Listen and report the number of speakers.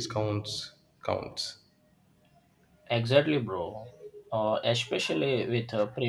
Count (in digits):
2